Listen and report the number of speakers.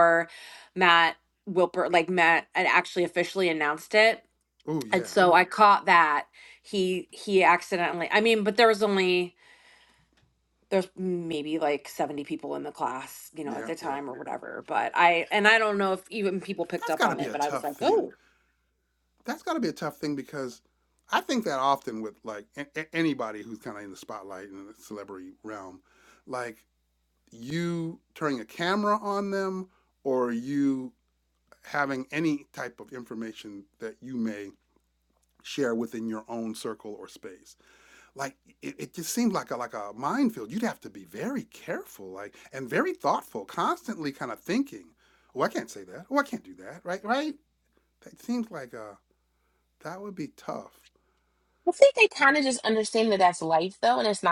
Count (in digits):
3